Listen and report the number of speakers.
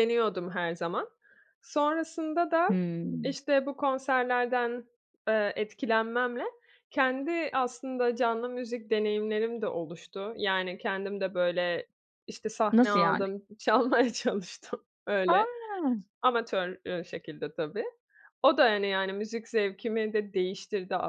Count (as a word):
two